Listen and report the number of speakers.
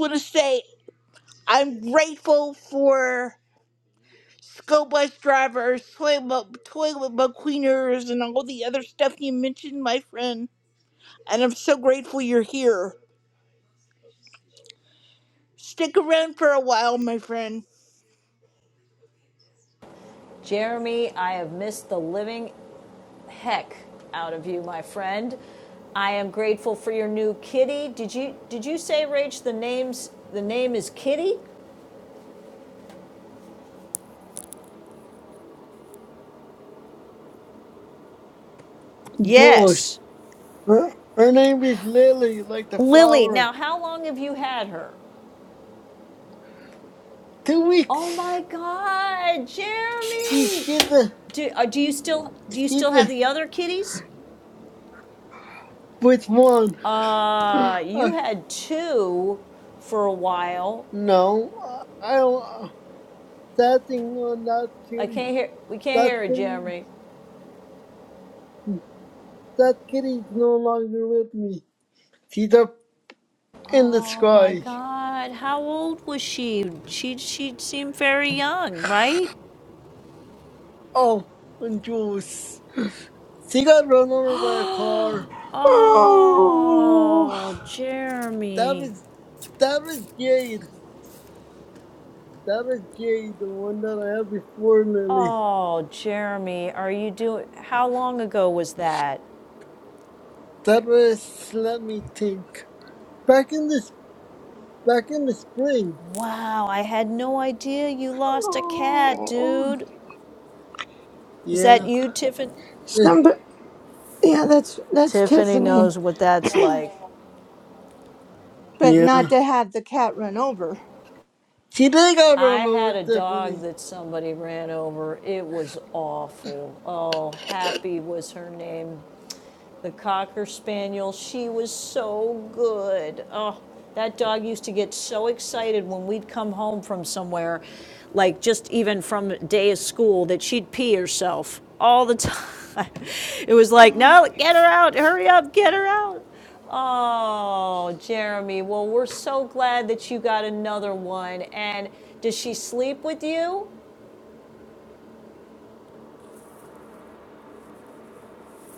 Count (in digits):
4